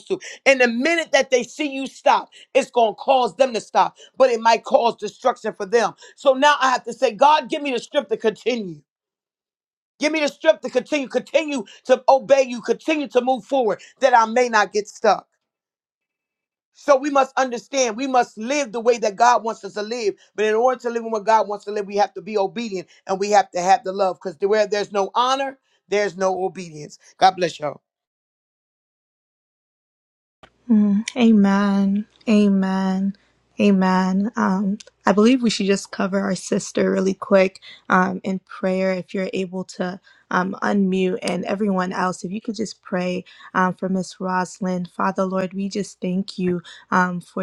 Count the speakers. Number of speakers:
two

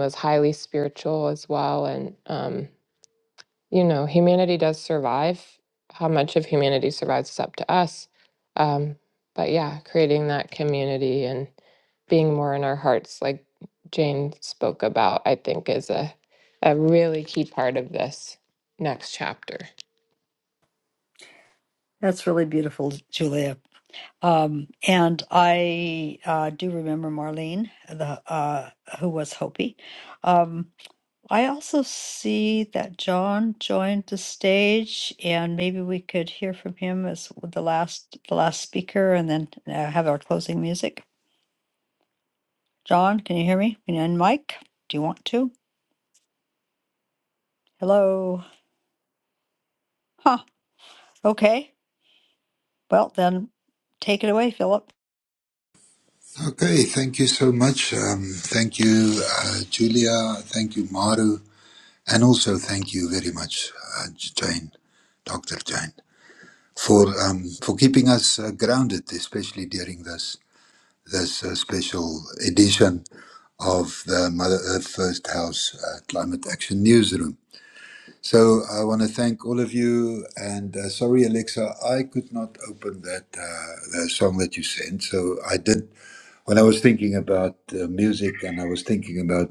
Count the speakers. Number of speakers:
three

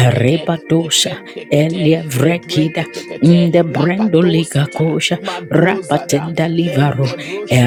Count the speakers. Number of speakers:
two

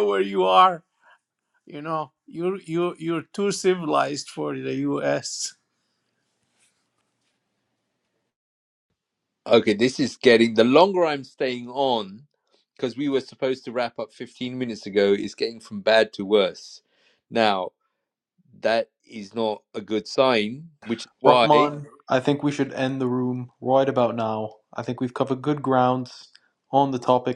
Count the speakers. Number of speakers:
three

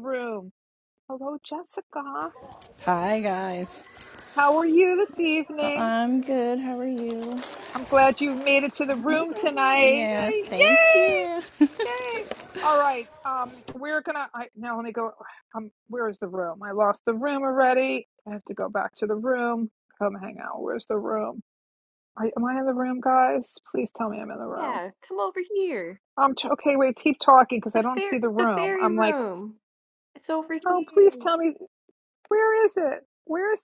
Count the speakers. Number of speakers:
three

